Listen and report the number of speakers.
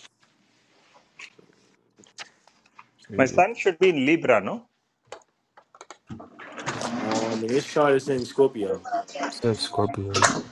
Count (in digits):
3